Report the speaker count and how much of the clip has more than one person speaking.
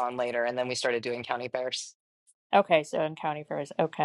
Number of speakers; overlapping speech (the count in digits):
2, no overlap